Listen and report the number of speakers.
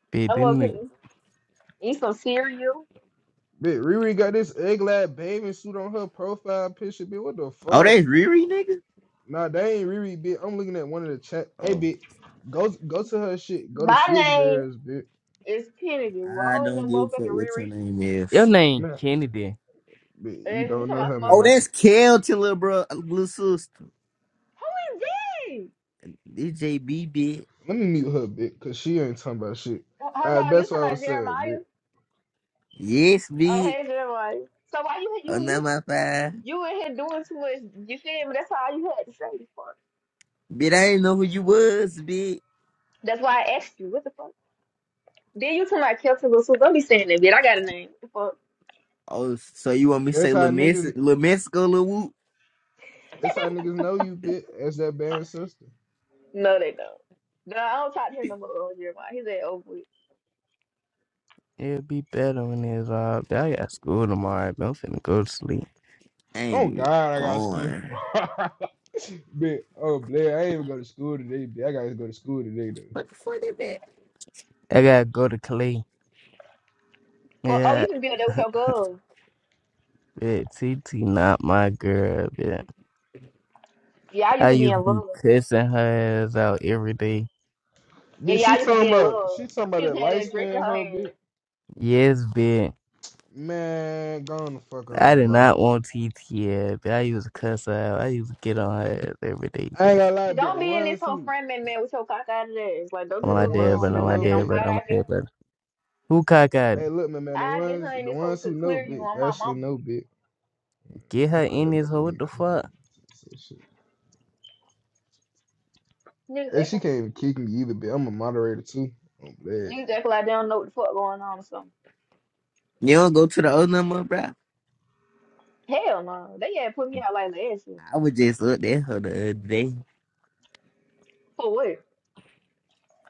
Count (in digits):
4